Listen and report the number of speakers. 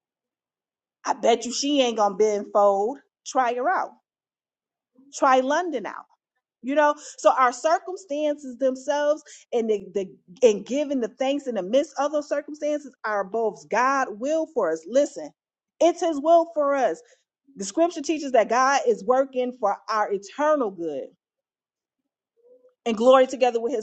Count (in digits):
1